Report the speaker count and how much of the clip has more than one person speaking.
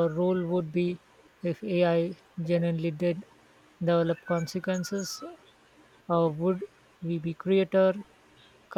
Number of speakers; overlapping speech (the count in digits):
1, no overlap